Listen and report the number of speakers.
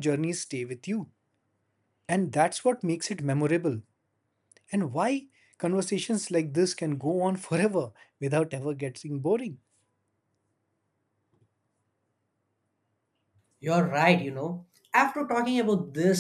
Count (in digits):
2